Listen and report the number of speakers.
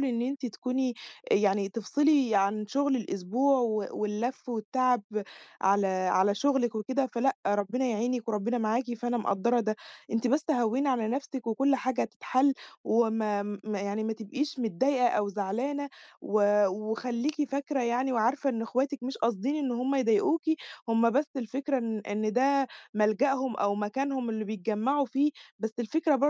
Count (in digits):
1